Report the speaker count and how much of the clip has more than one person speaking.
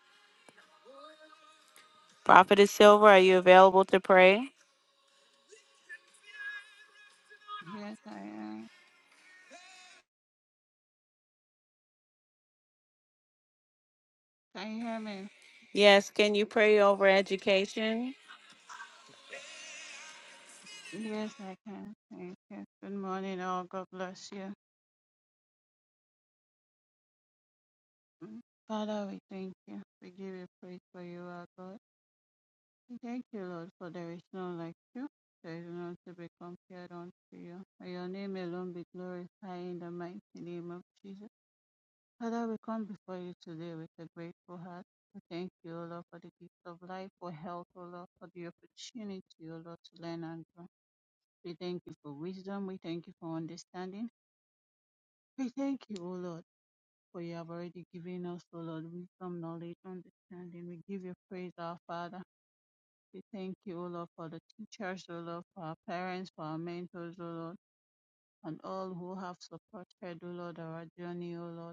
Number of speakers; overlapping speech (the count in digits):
2, no overlap